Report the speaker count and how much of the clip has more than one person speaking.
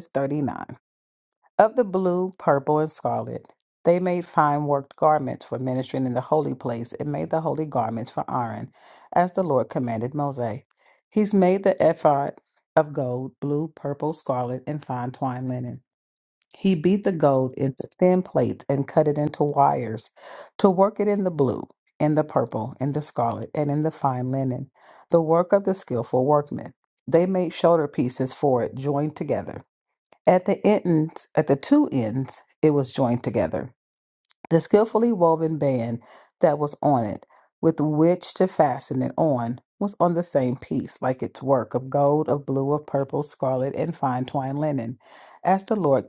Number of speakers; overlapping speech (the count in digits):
1, no overlap